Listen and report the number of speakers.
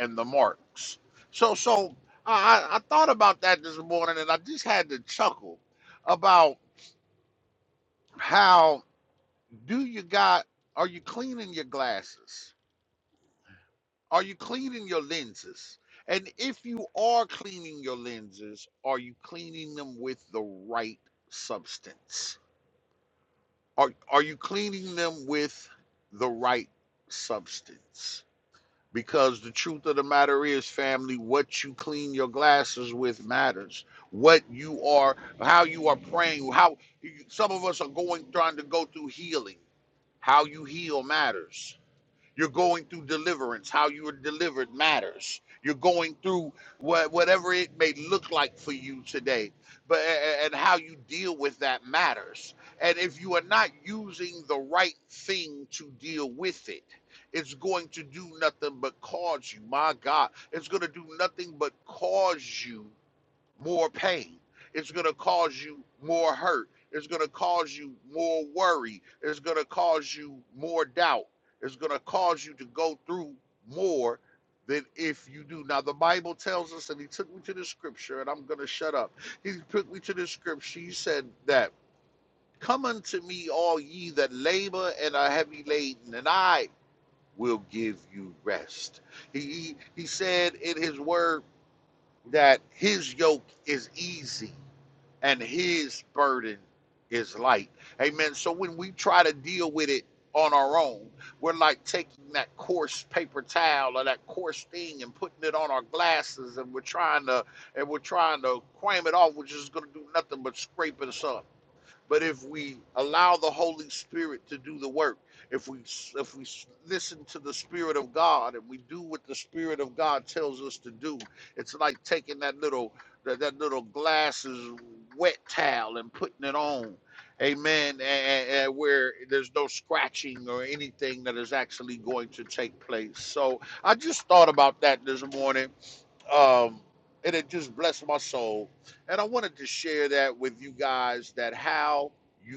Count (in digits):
1